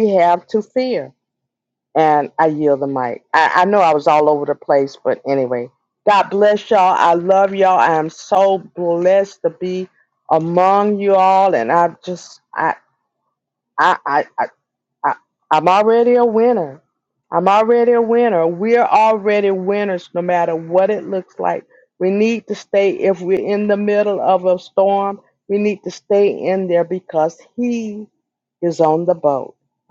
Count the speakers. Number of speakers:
1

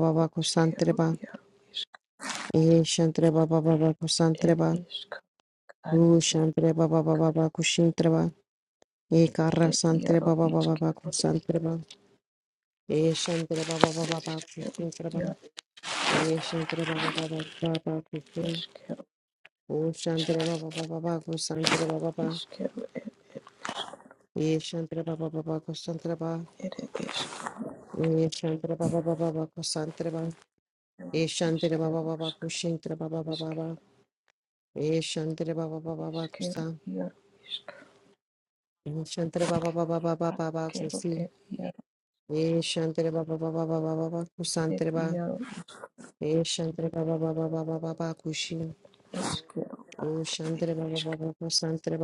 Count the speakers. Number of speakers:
2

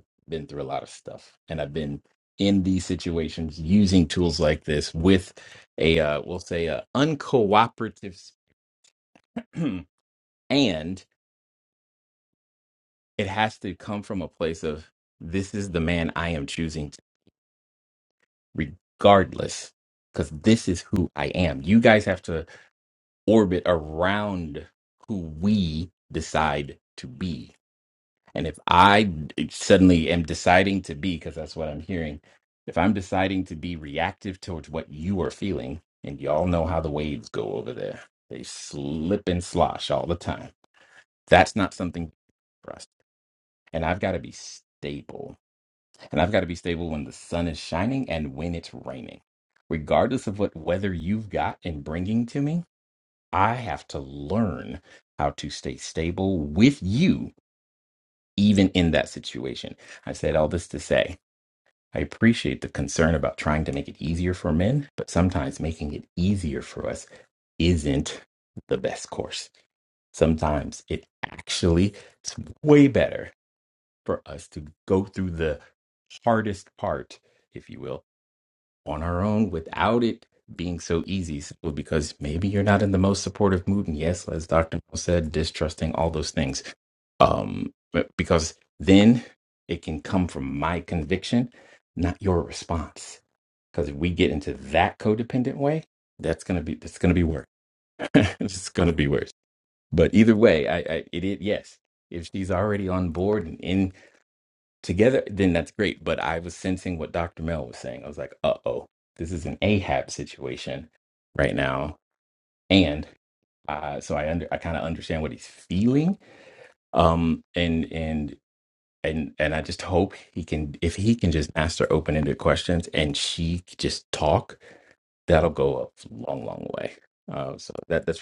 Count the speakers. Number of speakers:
1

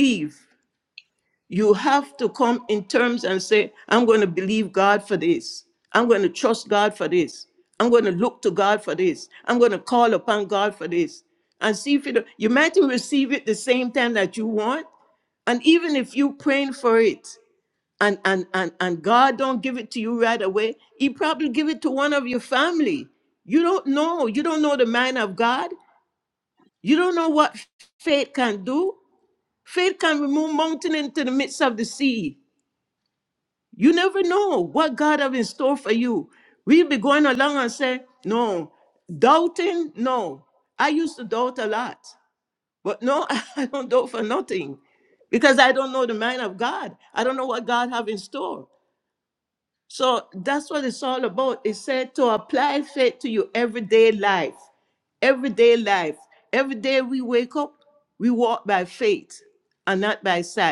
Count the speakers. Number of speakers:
1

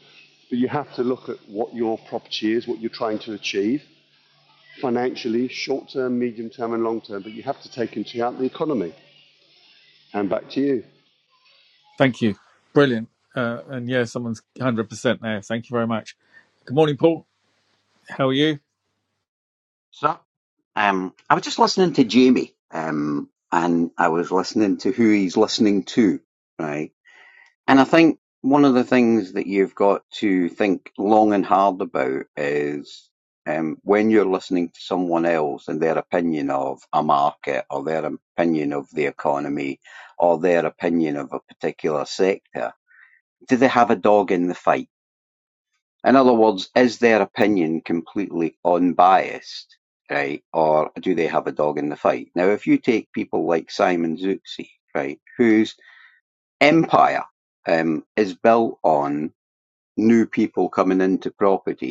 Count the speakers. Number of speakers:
3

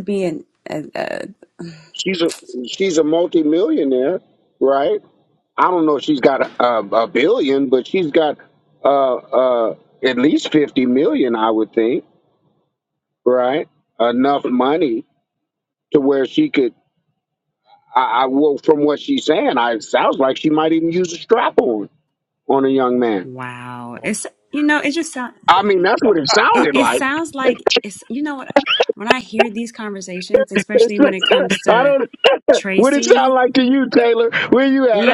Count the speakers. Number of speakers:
2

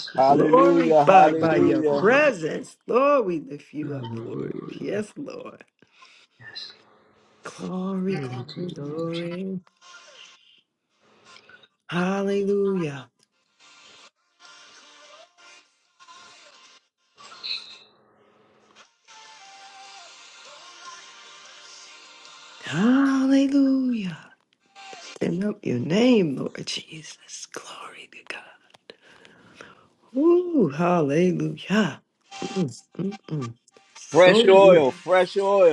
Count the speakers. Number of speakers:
3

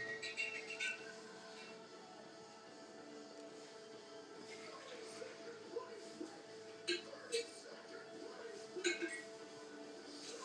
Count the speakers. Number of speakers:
0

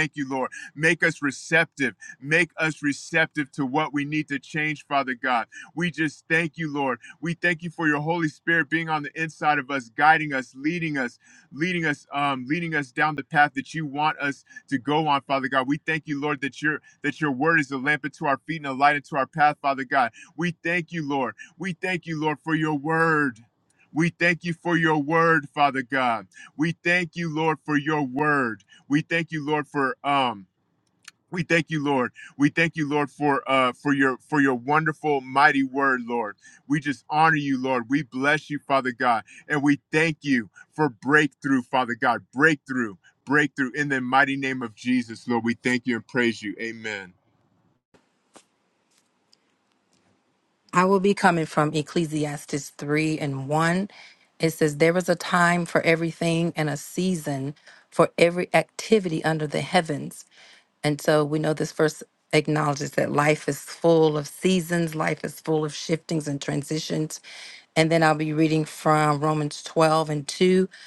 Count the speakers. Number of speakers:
2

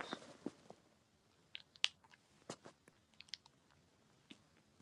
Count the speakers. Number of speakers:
0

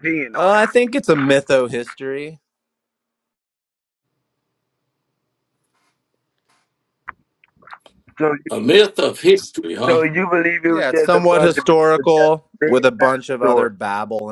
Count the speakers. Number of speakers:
3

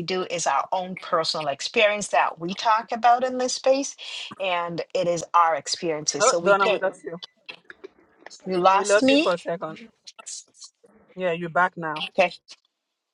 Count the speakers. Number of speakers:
2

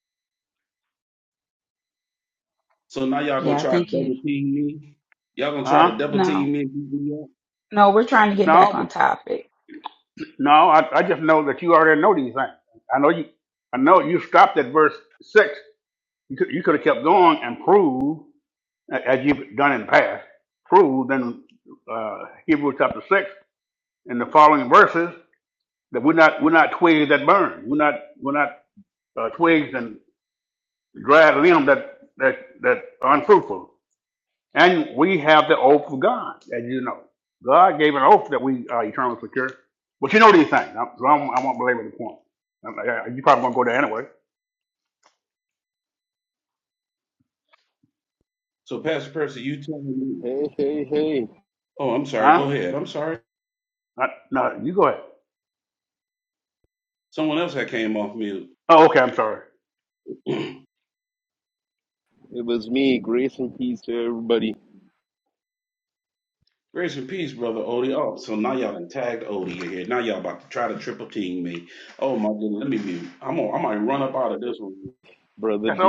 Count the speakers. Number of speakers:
4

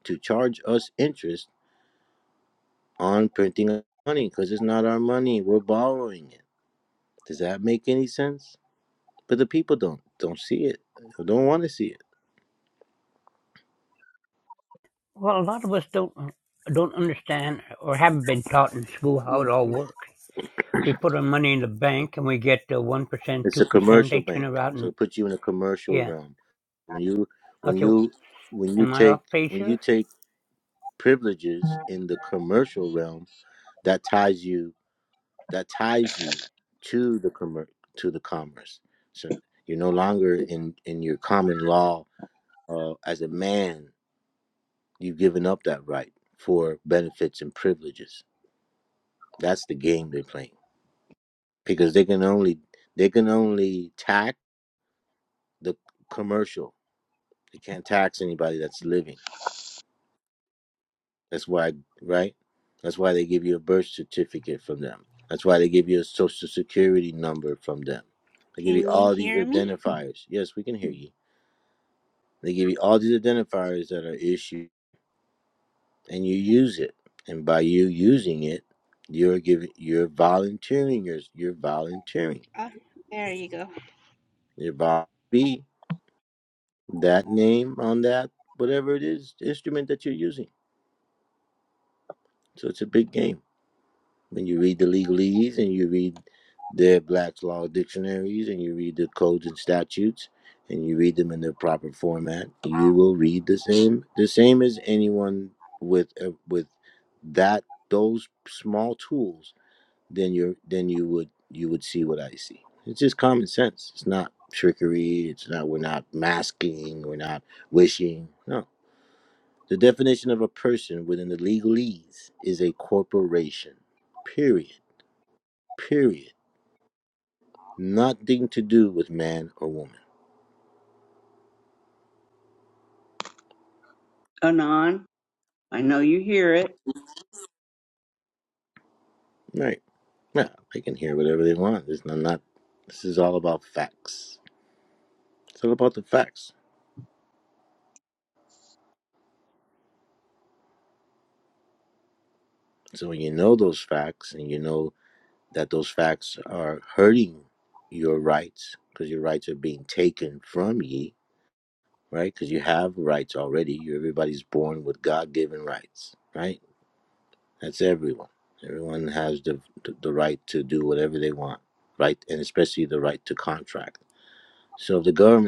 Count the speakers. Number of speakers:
4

